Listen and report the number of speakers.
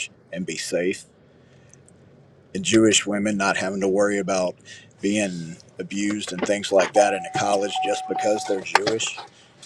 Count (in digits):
1